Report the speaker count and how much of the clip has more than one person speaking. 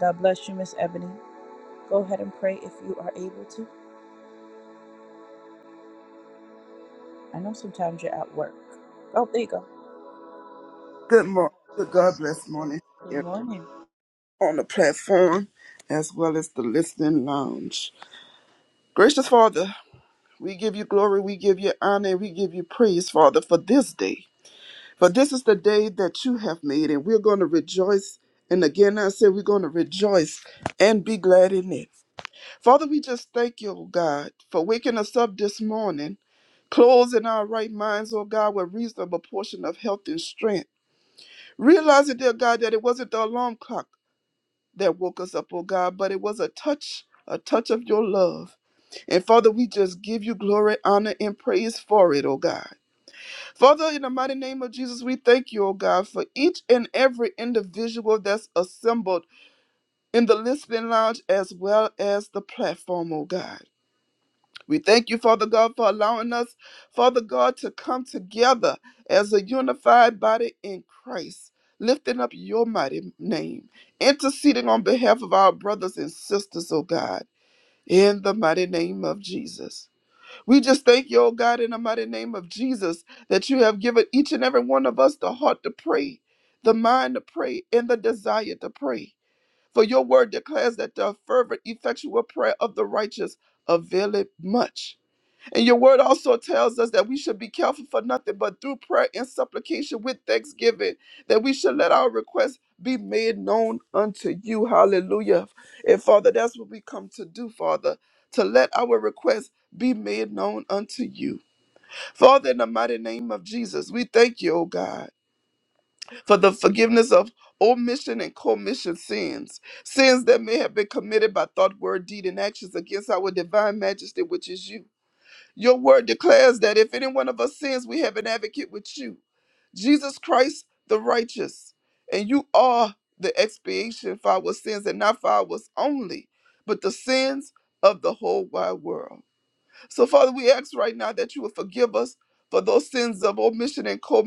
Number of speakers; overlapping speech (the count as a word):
two, under 1%